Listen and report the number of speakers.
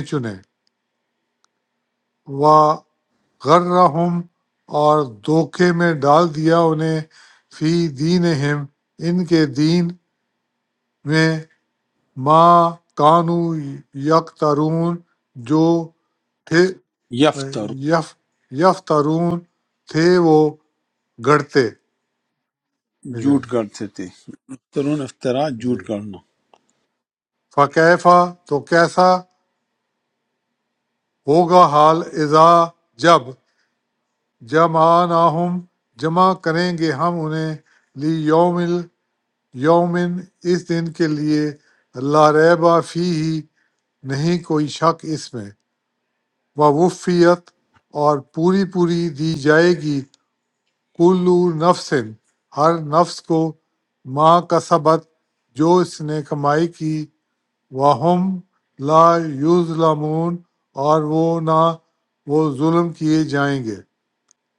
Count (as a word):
two